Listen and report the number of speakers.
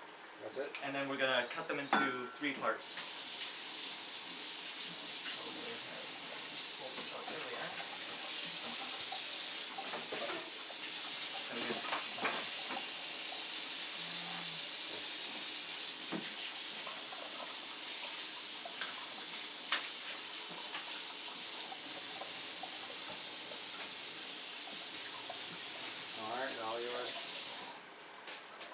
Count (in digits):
2